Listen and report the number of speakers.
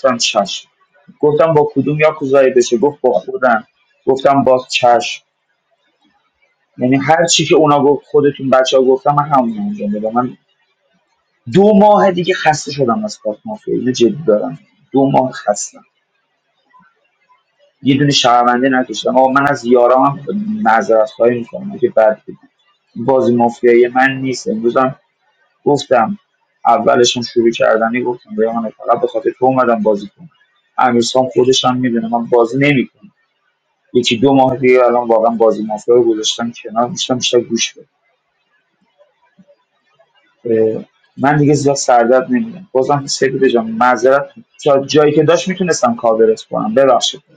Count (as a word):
one